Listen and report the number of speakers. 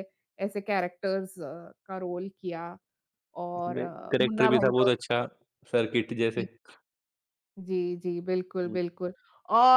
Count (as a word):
two